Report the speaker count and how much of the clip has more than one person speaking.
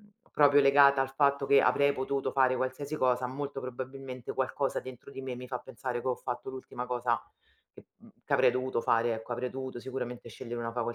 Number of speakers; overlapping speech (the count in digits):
1, no overlap